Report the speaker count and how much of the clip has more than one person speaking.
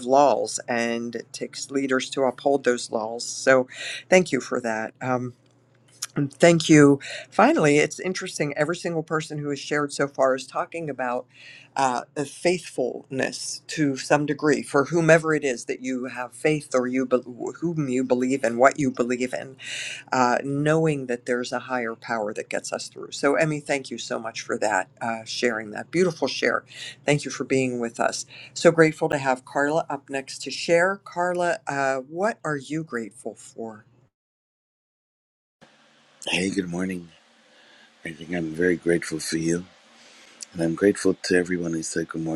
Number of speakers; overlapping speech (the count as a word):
two, no overlap